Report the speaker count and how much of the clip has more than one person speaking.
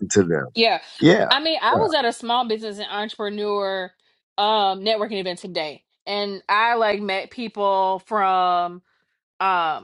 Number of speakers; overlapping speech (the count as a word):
two, about 3%